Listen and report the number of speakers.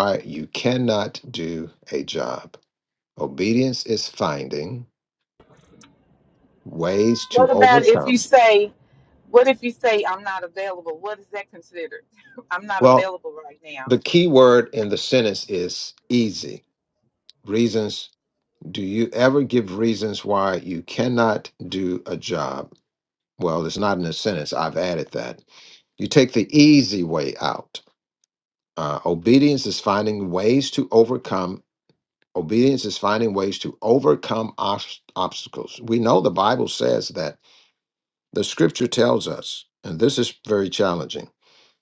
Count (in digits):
2